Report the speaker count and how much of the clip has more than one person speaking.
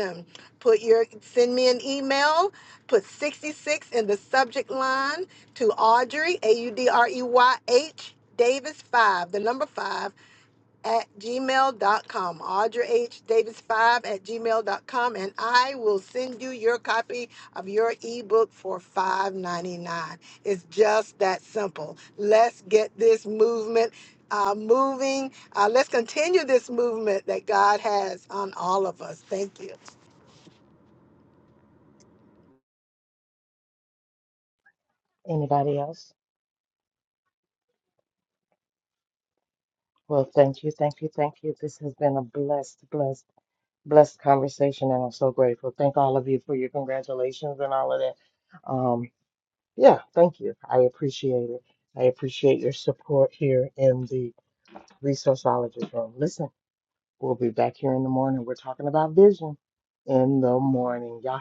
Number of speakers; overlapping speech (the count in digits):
2, no overlap